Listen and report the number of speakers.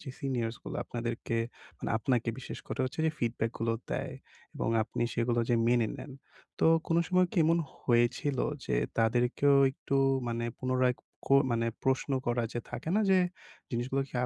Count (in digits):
1